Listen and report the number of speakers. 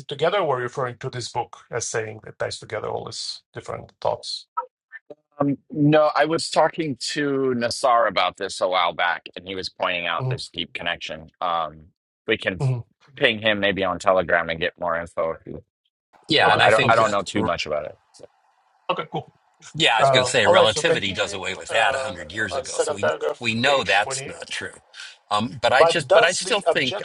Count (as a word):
three